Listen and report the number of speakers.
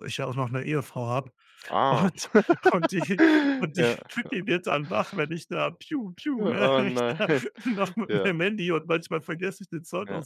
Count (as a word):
two